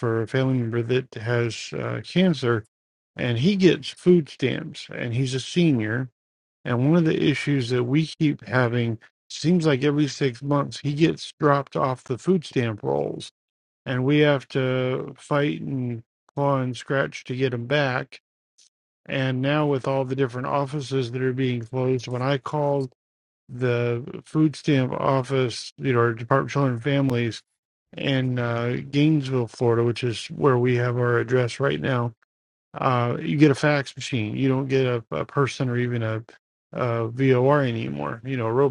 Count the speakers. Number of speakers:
1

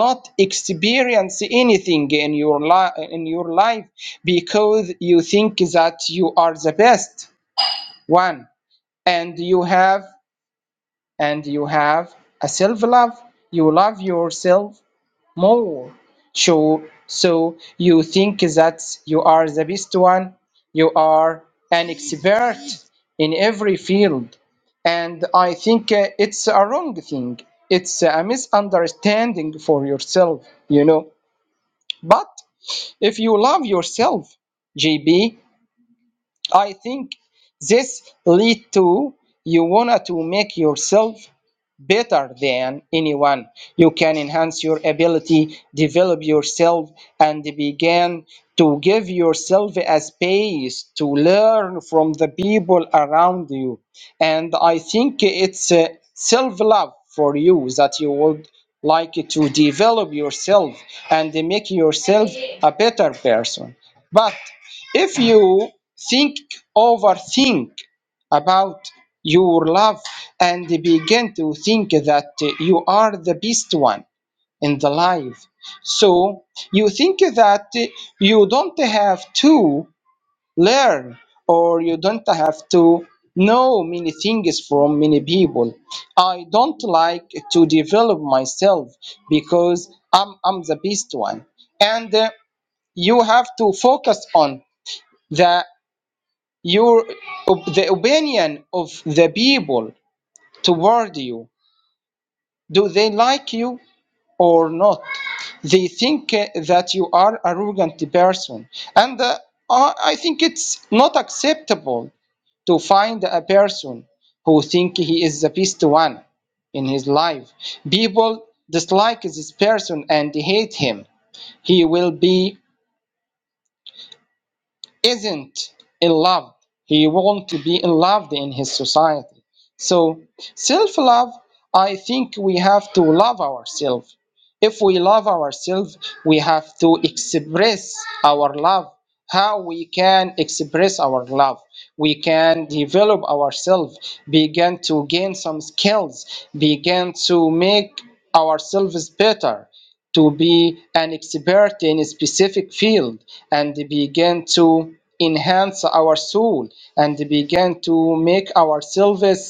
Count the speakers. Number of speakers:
1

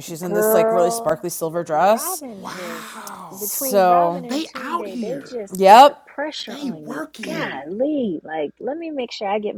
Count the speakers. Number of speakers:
3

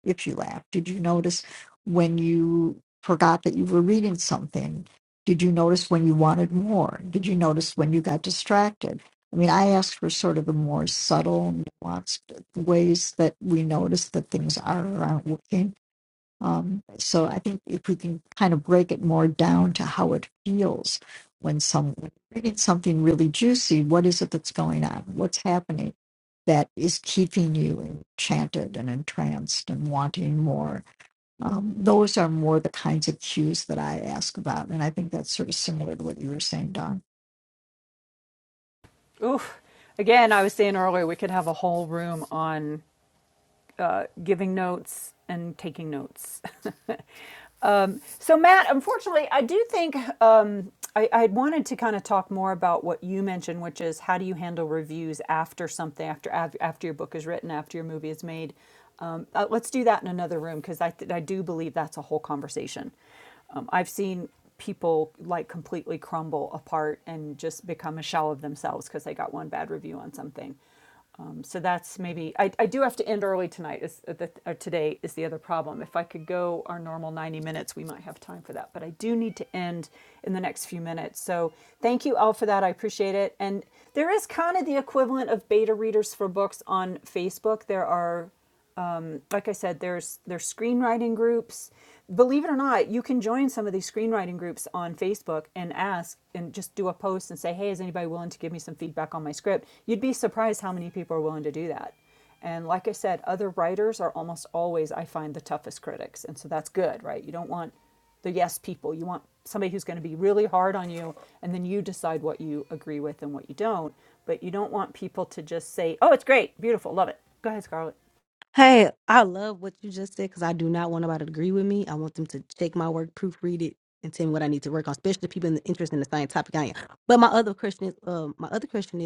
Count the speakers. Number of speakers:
3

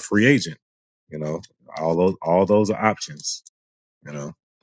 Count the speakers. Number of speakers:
1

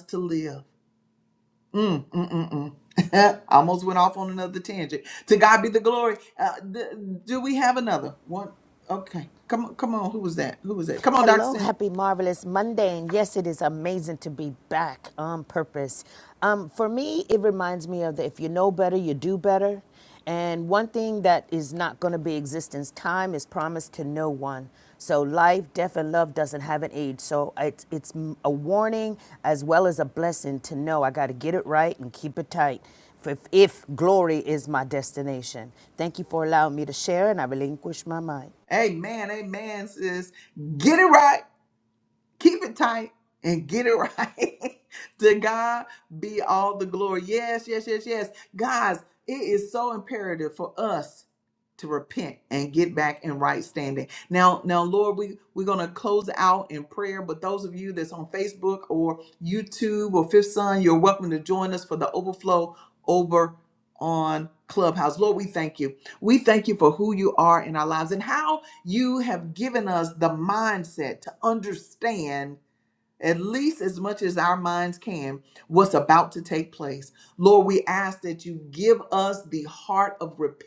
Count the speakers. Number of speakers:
2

